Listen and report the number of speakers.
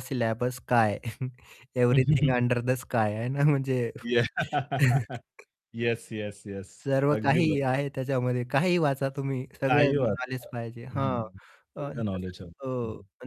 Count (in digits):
2